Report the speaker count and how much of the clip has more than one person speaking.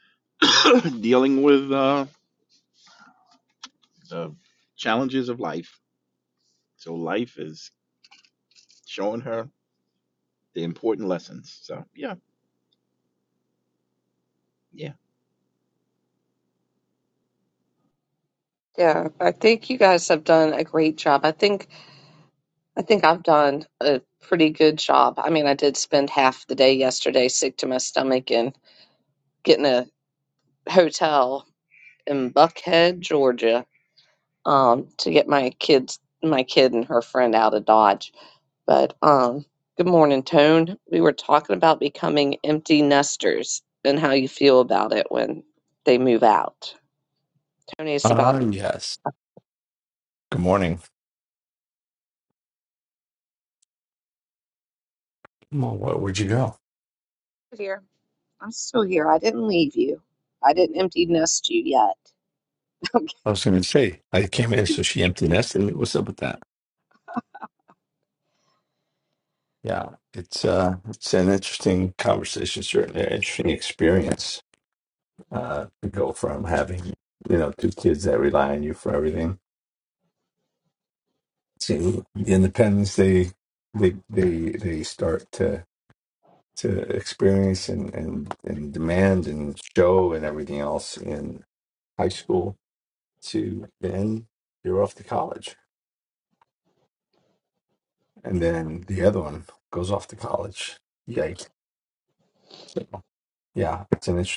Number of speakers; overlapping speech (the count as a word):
three, under 1%